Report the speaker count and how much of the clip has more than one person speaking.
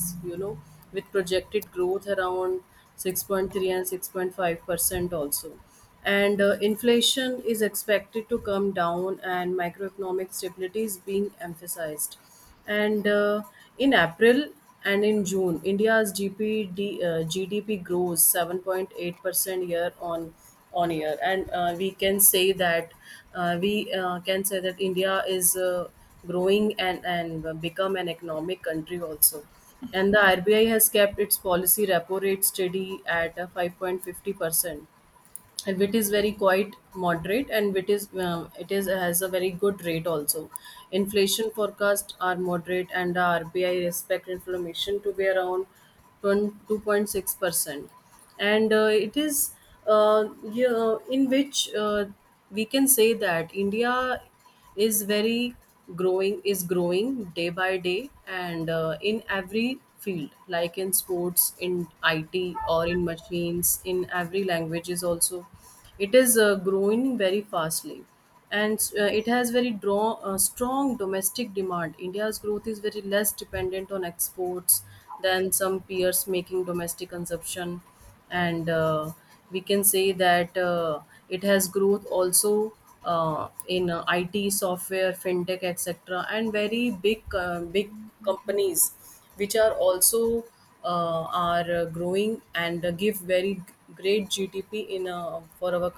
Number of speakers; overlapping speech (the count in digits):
1, no overlap